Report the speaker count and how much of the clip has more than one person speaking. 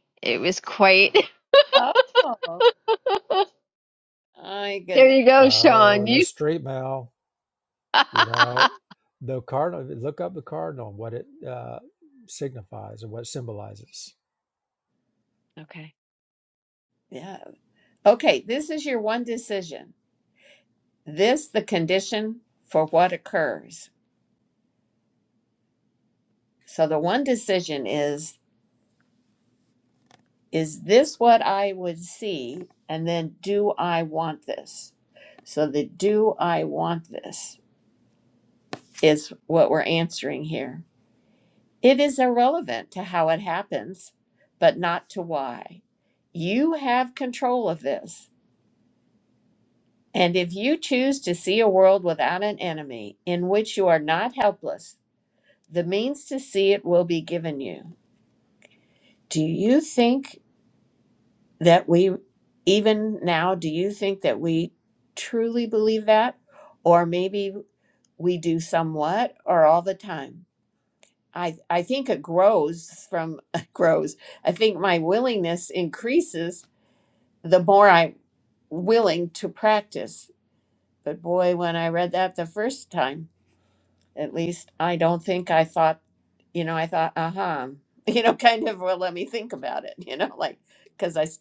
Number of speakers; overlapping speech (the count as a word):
three, about 1%